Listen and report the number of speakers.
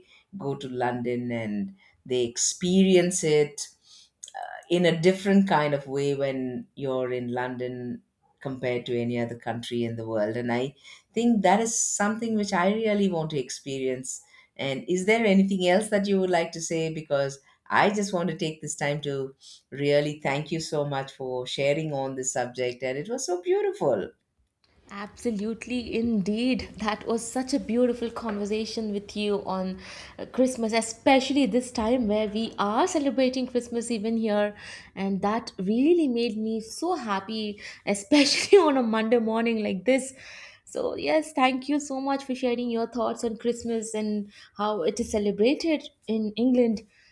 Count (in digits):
2